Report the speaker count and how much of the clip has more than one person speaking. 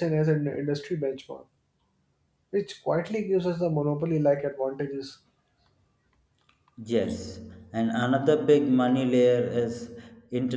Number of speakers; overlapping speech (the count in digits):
2, no overlap